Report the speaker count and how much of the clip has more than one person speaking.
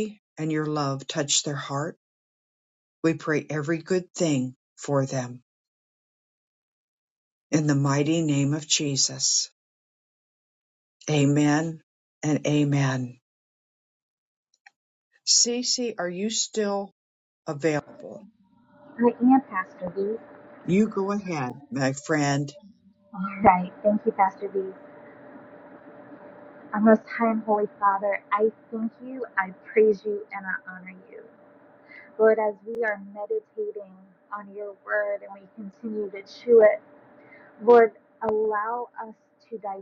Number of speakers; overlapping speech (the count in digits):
2, no overlap